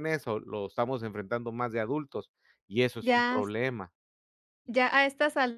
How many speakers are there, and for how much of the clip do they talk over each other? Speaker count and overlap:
2, about 8%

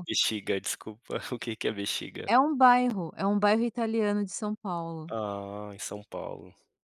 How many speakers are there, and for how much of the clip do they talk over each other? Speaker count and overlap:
2, about 1%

